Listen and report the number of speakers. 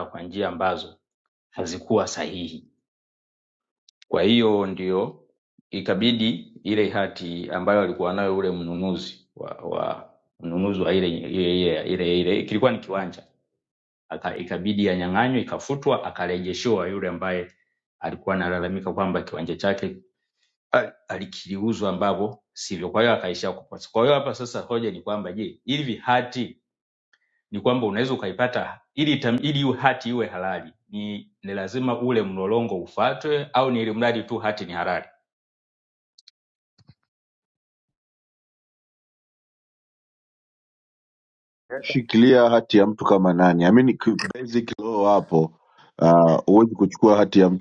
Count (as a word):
two